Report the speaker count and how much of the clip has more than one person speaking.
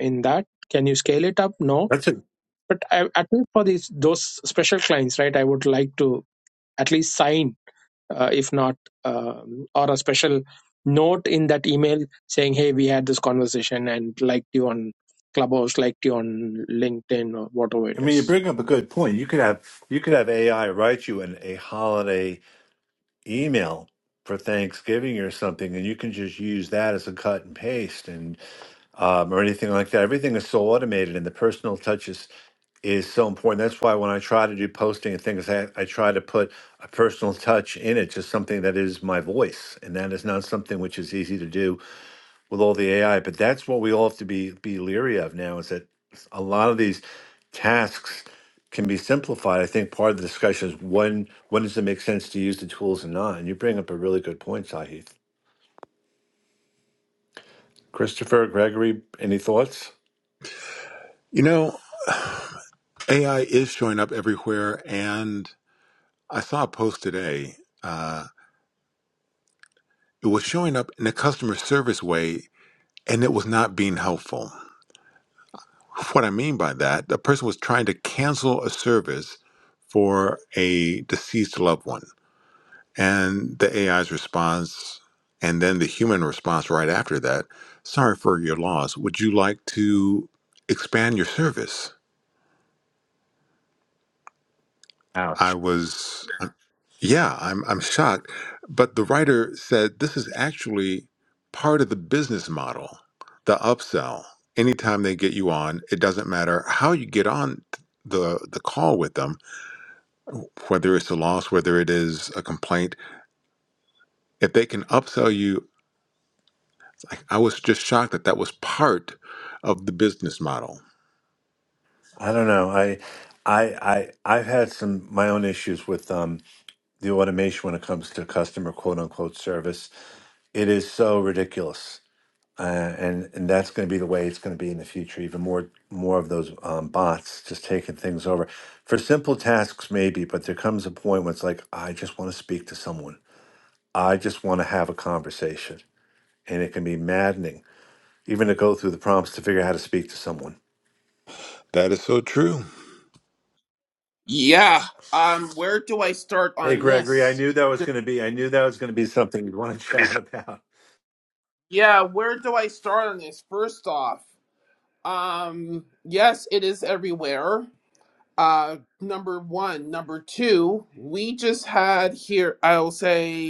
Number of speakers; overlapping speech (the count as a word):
four, under 1%